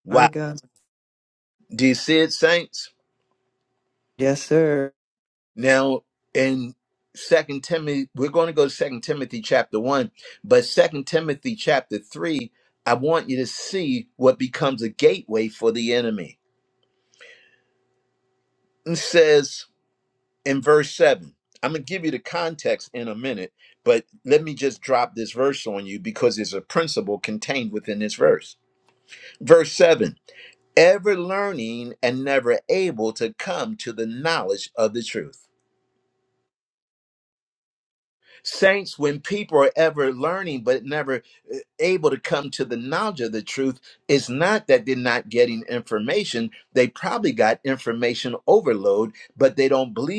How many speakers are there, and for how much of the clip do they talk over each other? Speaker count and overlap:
2, under 1%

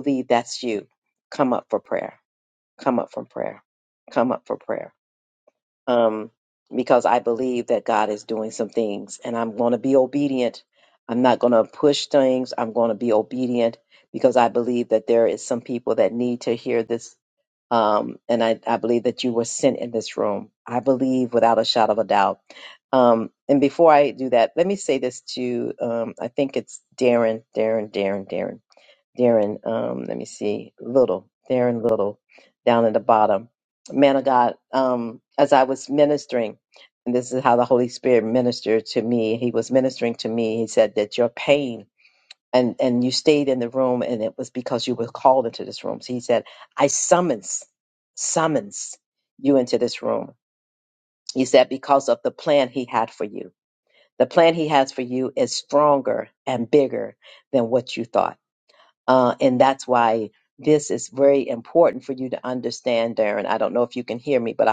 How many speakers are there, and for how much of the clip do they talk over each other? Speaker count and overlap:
1, no overlap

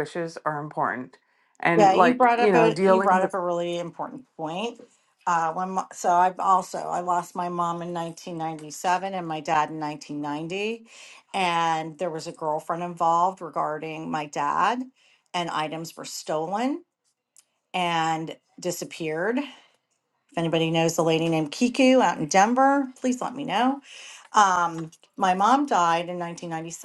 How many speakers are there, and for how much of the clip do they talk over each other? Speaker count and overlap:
2, about 6%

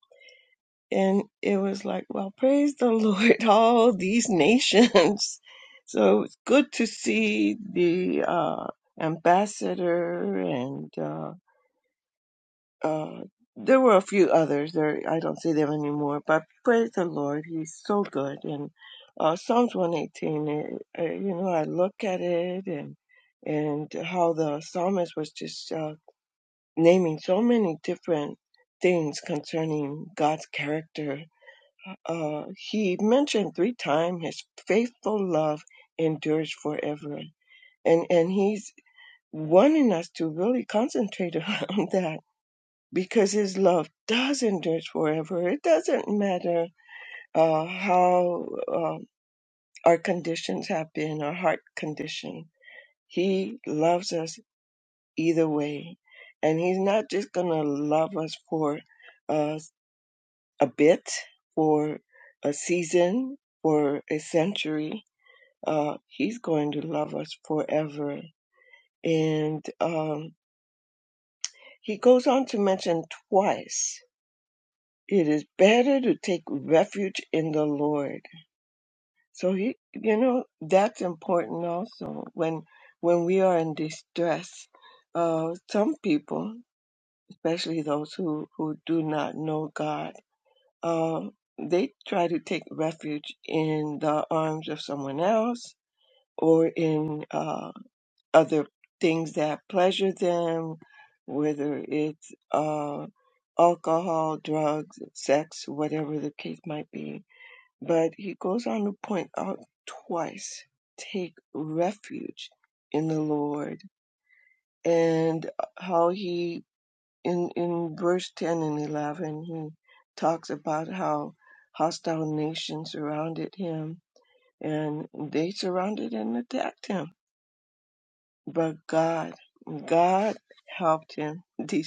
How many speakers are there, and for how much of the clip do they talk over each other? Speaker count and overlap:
1, no overlap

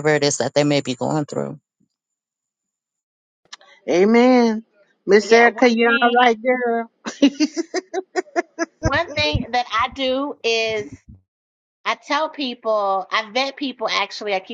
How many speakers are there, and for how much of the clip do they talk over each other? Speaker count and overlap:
3, about 7%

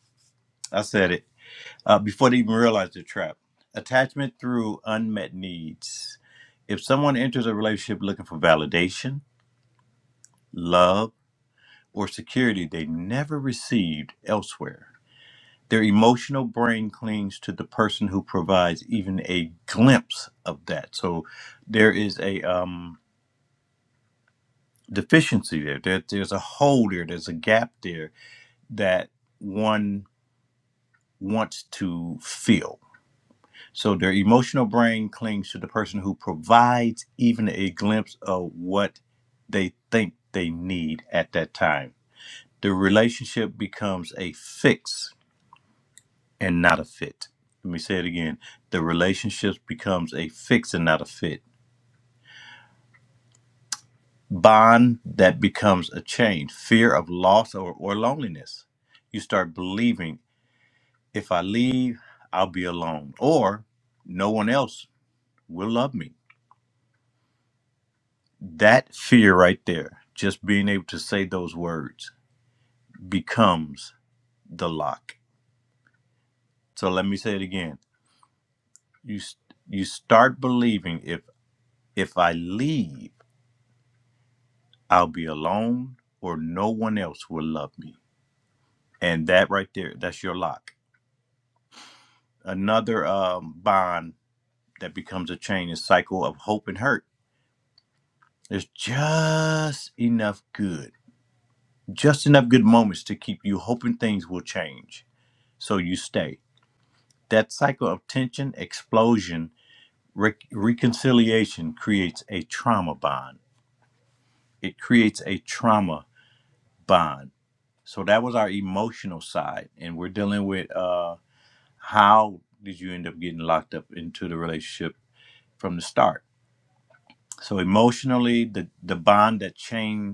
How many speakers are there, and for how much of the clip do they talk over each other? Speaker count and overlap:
1, no overlap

